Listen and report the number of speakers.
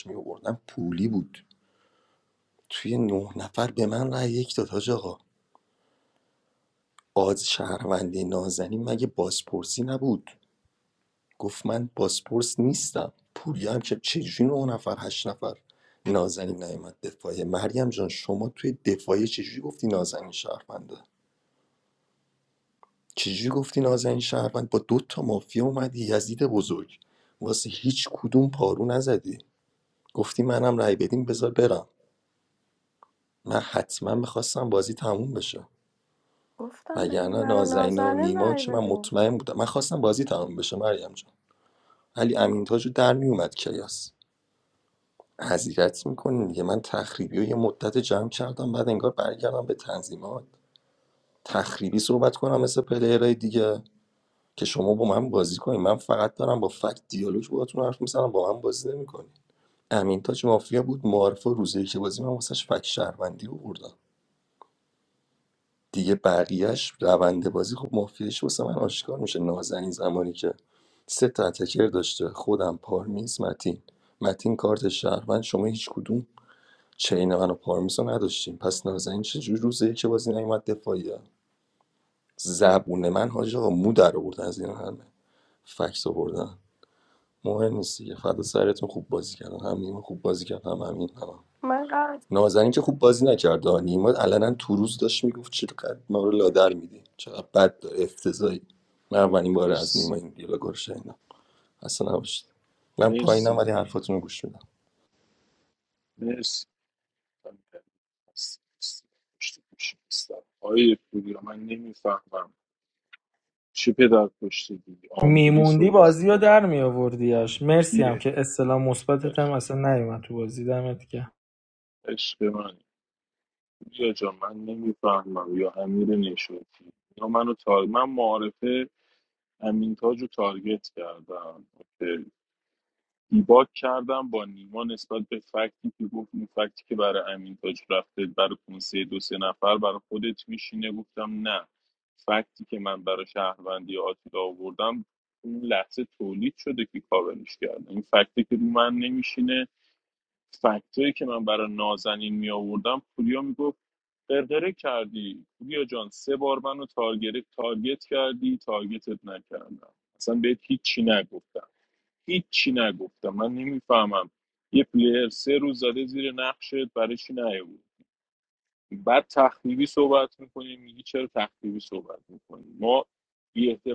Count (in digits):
4